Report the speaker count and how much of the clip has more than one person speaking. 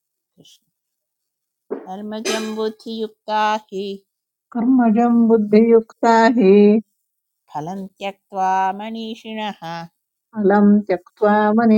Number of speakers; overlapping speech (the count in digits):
2, no overlap